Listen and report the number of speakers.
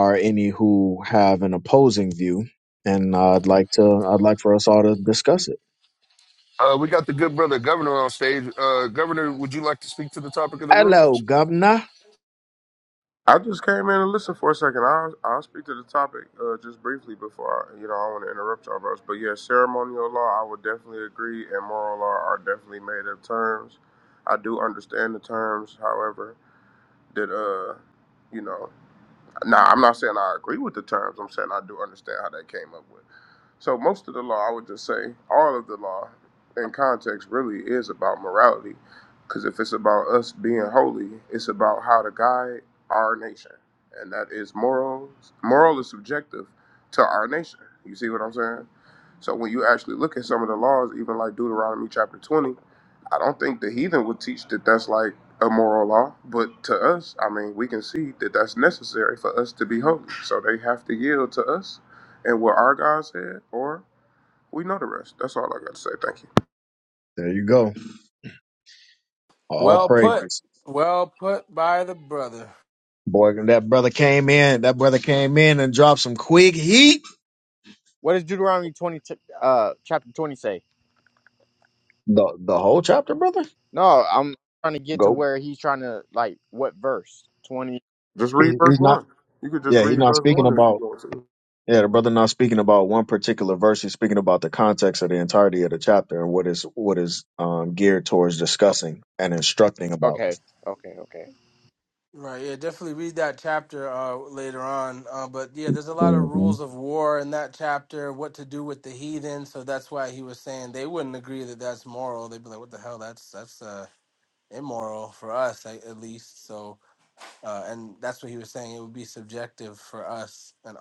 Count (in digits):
5